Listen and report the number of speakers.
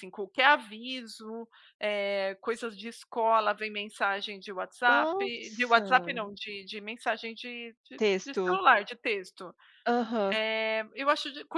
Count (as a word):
two